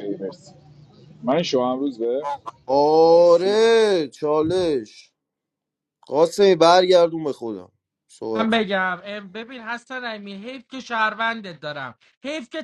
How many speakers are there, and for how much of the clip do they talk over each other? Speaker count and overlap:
3, about 5%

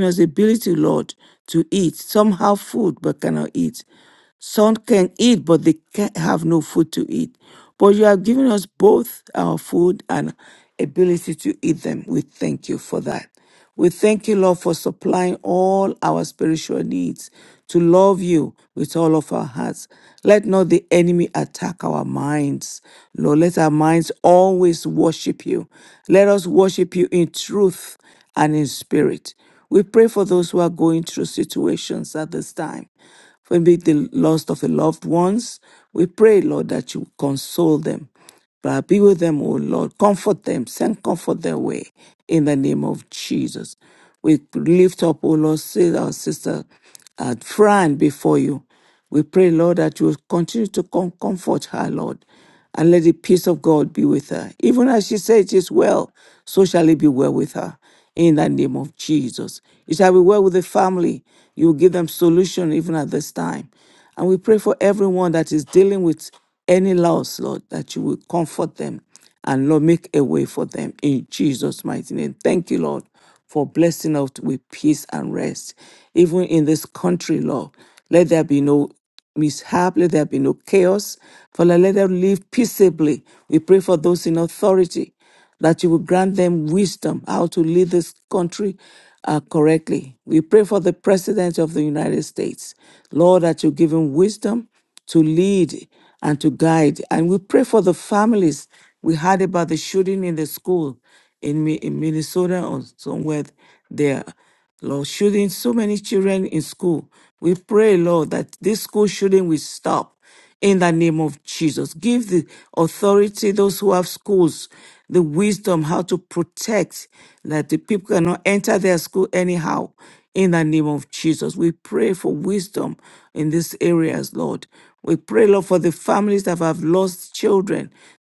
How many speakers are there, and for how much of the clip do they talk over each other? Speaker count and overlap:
1, no overlap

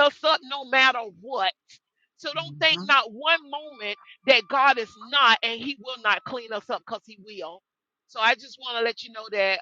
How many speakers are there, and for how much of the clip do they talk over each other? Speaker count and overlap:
1, no overlap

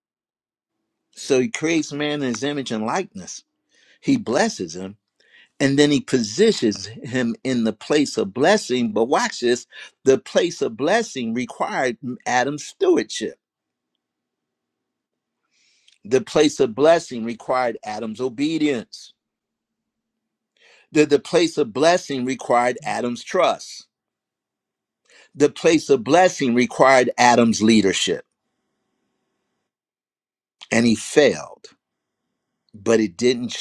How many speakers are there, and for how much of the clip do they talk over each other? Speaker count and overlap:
1, no overlap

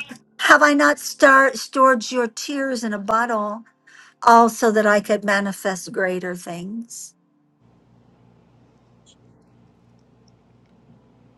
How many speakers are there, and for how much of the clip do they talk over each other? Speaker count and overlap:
1, no overlap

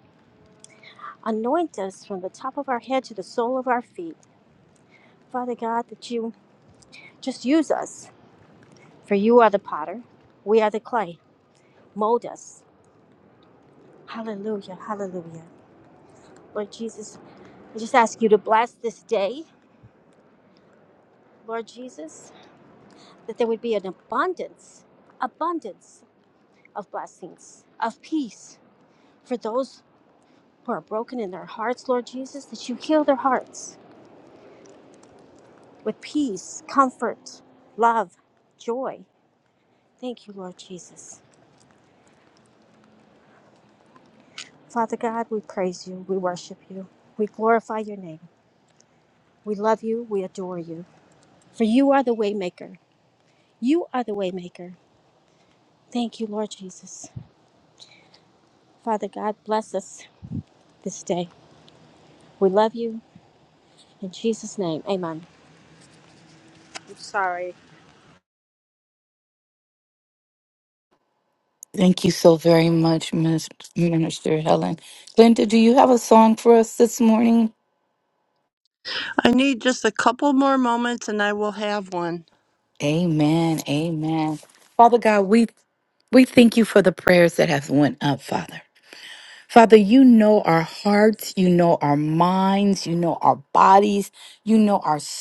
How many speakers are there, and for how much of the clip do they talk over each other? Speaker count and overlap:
3, no overlap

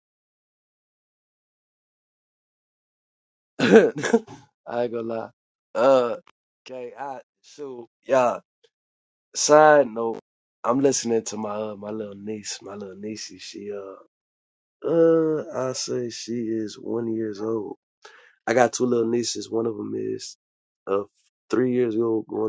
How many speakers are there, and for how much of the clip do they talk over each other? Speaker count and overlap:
1, no overlap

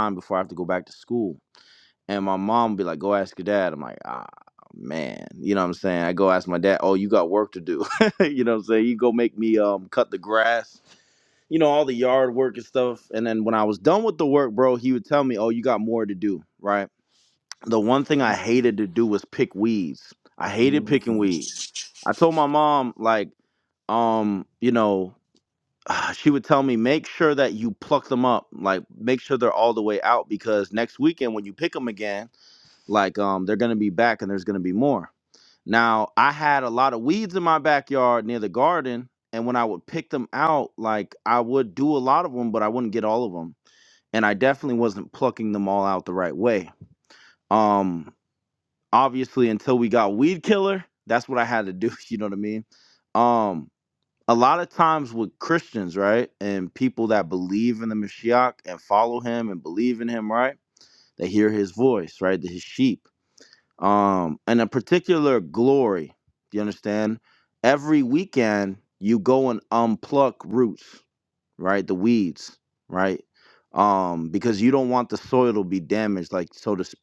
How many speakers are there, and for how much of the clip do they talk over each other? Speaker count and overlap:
1, no overlap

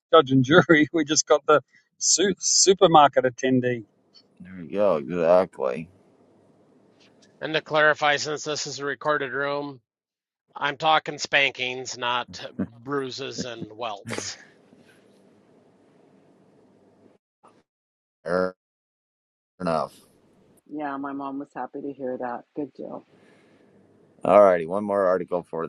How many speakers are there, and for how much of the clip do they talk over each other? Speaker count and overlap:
4, no overlap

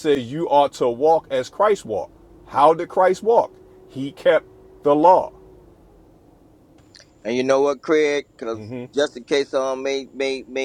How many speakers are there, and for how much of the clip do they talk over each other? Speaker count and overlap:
2, no overlap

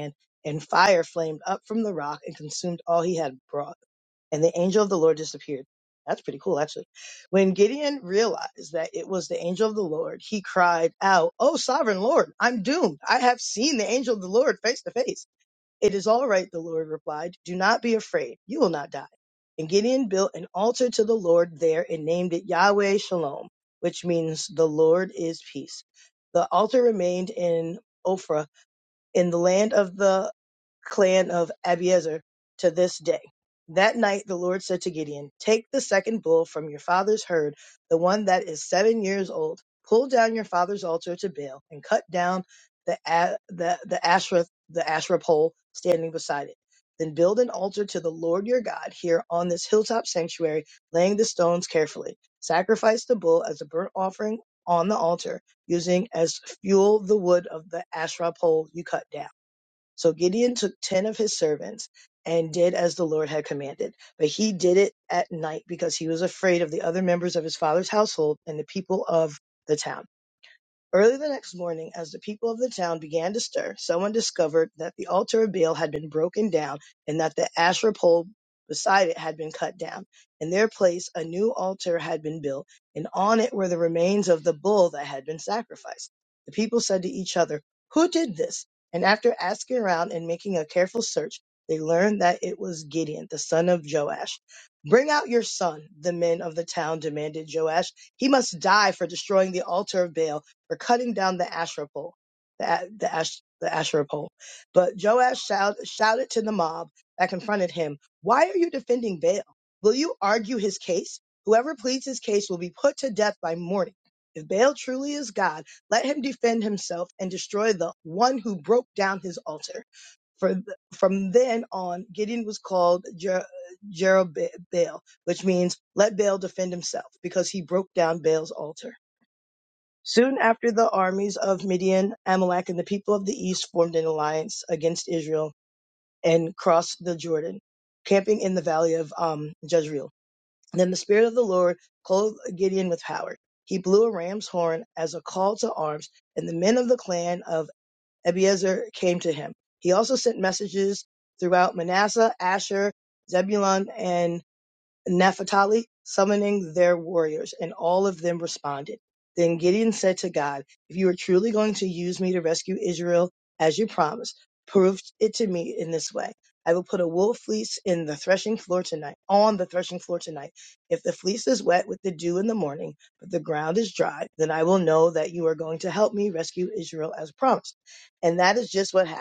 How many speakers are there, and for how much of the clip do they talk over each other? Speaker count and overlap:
1, no overlap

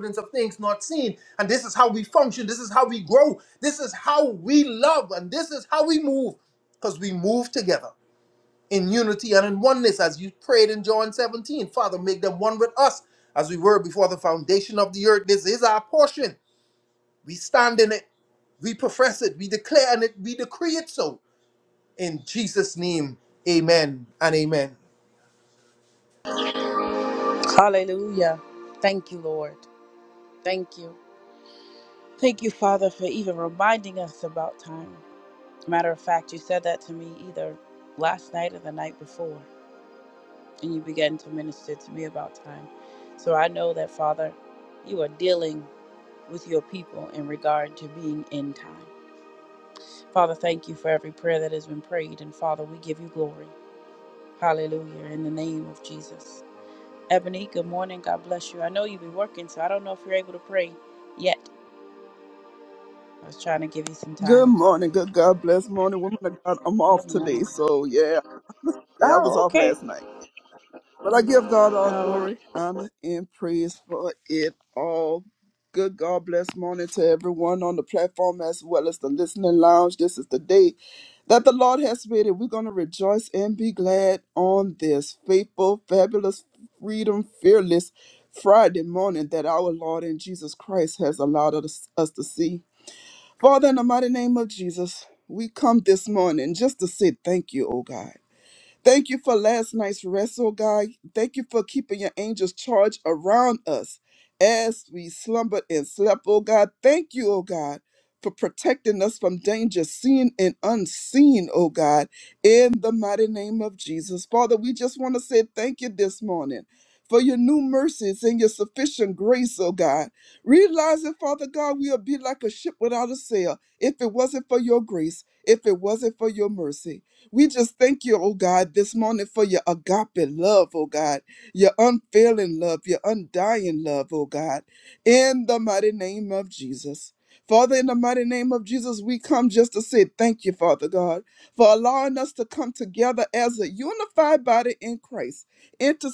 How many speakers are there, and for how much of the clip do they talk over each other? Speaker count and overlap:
3, about 2%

